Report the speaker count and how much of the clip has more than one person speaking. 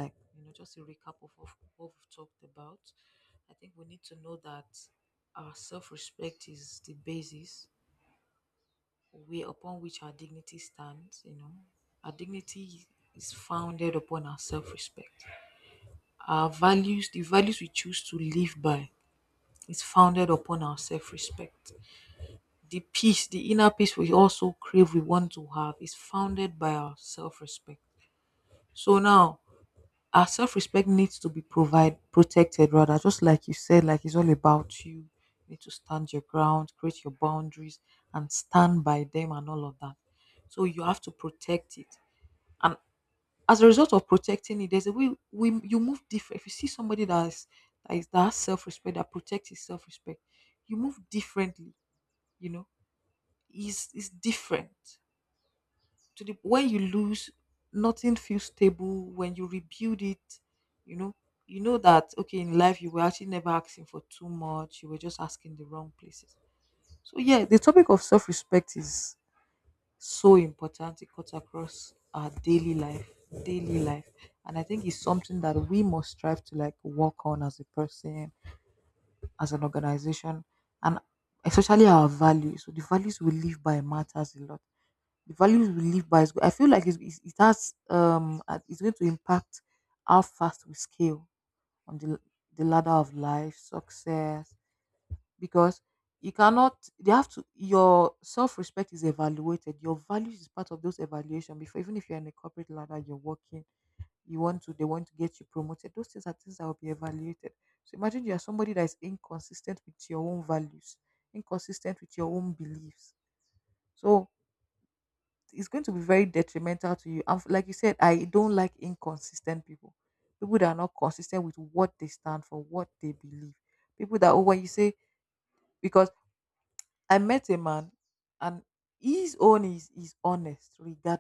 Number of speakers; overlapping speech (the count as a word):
one, no overlap